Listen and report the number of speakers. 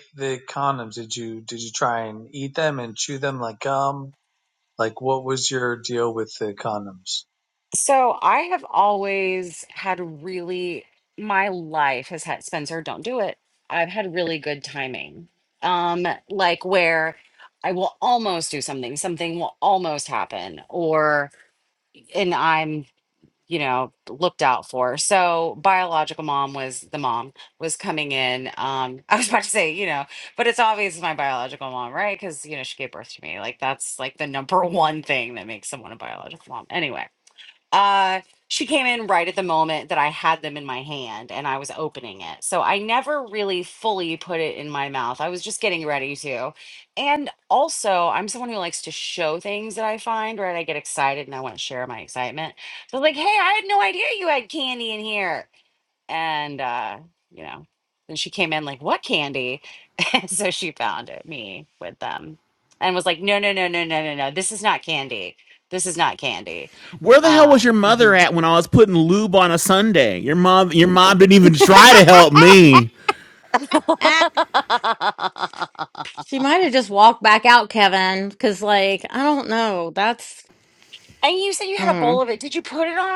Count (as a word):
four